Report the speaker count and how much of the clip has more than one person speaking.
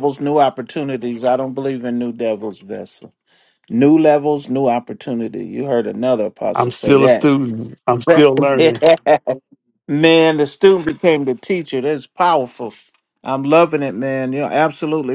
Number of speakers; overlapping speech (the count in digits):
2, about 8%